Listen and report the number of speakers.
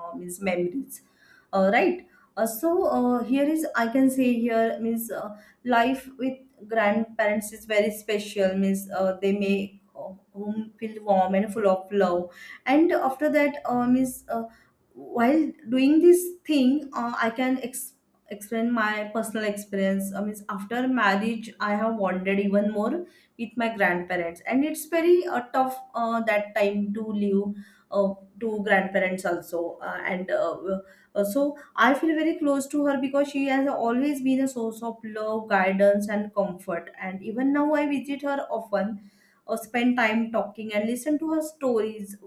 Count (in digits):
1